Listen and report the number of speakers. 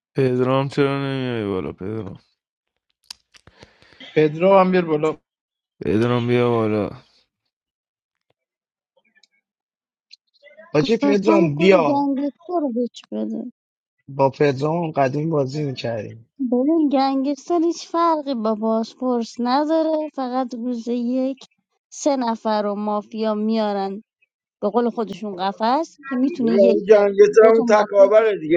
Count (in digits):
5